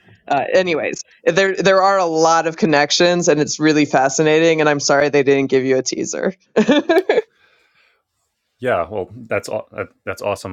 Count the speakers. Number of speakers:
2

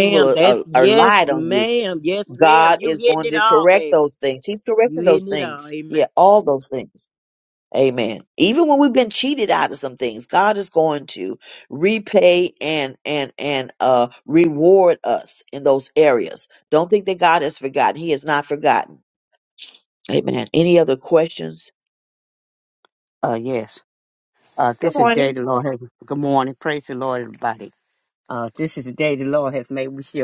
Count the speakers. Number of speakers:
3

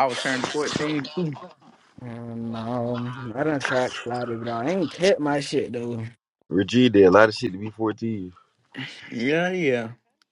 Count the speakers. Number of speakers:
3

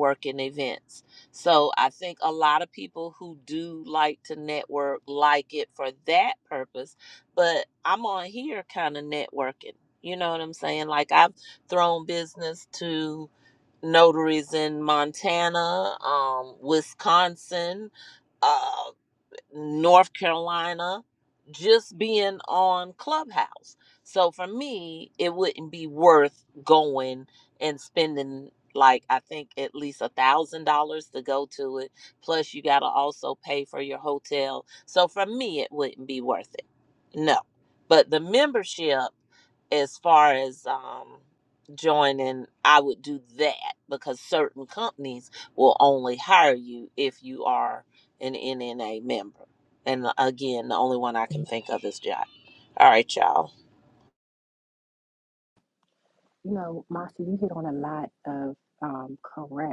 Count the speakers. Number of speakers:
2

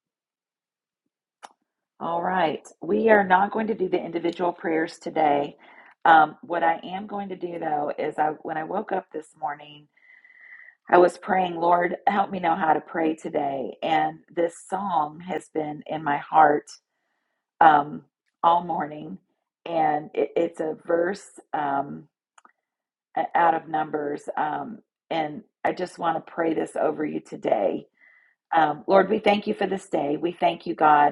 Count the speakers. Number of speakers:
1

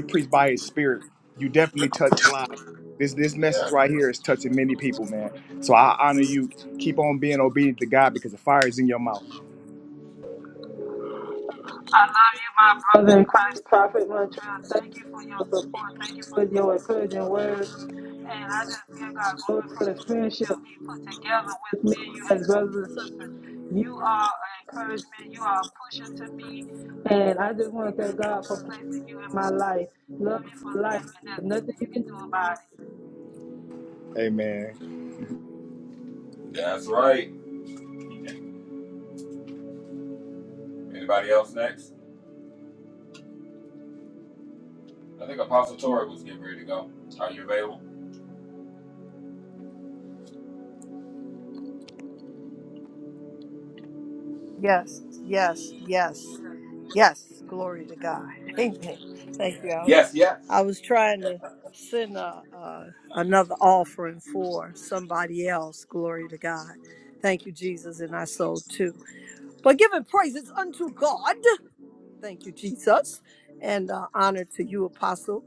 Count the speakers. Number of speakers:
4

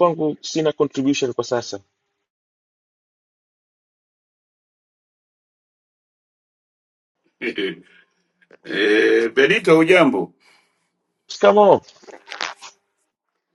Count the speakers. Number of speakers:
2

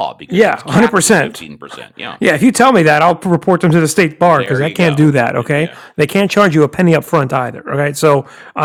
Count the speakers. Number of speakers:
2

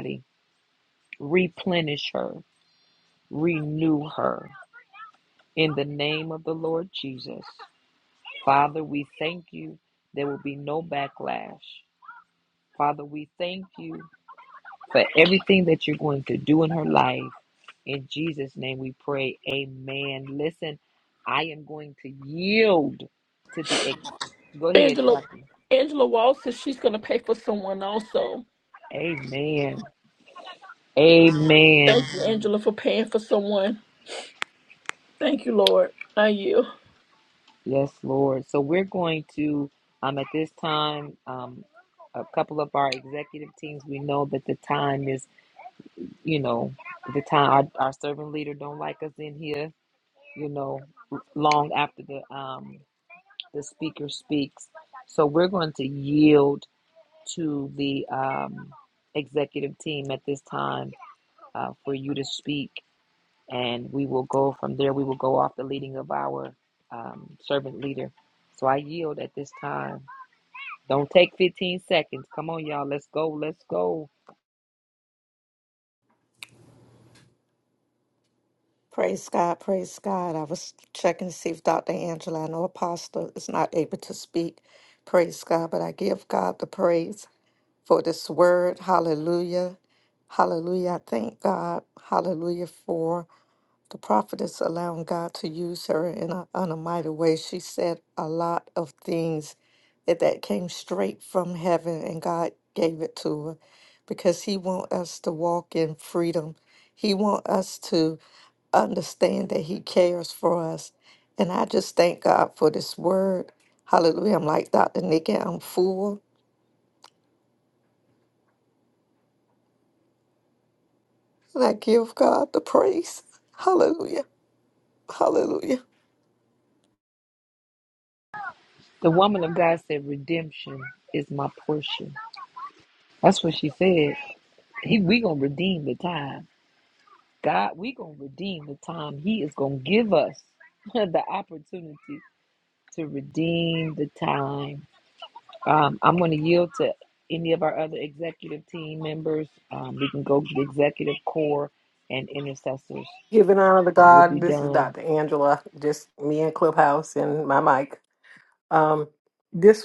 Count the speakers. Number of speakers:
4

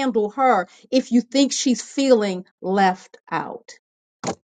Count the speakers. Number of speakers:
1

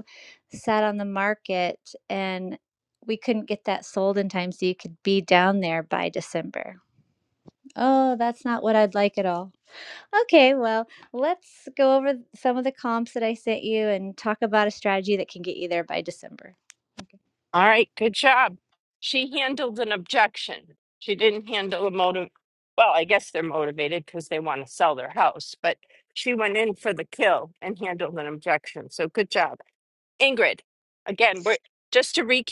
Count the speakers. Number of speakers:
2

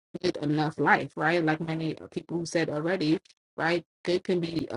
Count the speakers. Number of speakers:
1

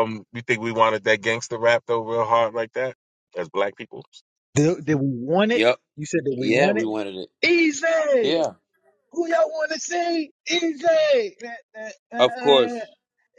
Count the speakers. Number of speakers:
3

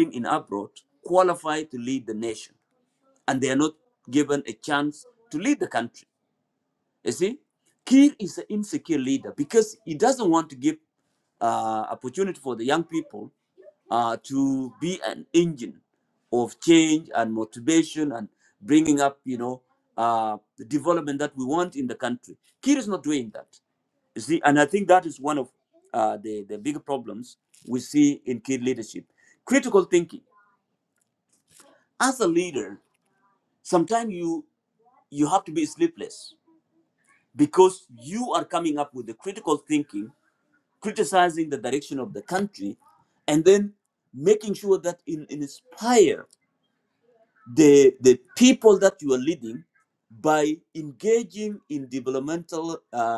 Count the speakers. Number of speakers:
1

